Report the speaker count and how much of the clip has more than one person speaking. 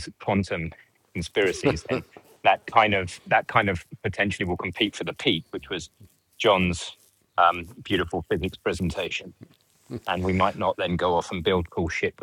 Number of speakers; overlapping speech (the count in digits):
1, no overlap